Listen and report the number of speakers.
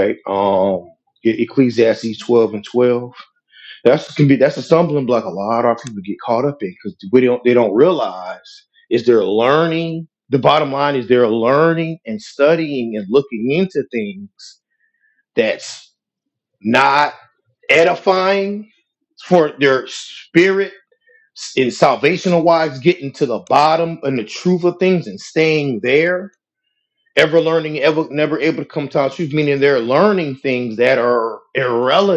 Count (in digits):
1